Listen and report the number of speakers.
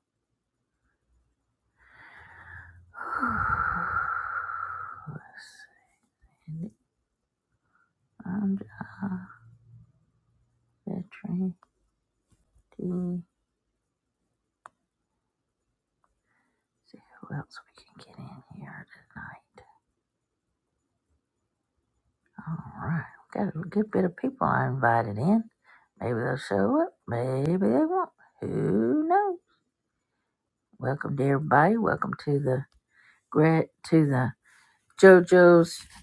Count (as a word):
one